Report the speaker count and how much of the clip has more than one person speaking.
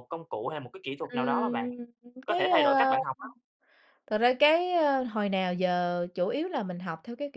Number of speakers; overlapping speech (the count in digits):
2, about 18%